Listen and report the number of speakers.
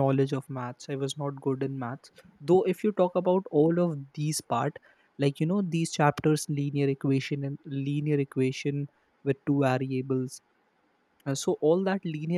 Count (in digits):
1